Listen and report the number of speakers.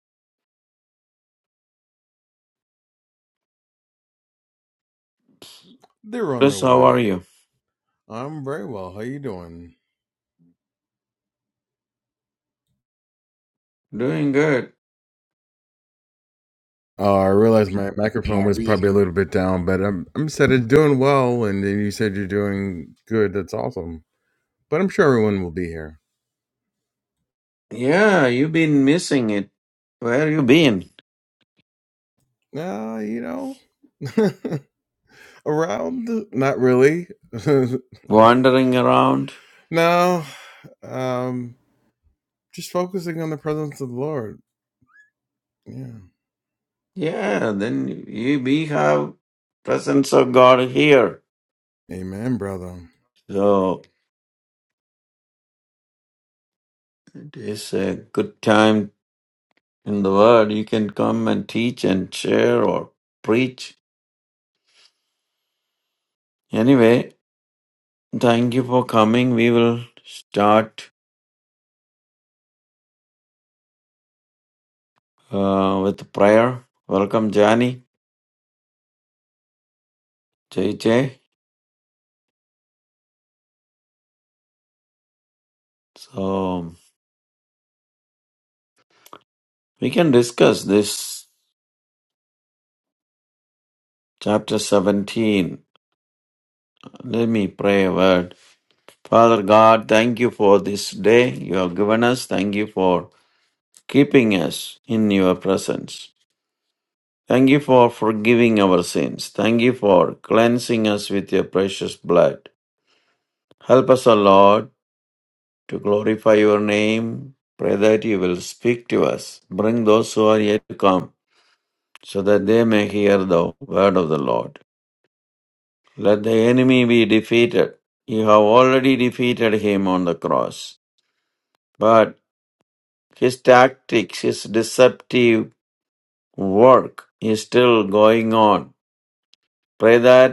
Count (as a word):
two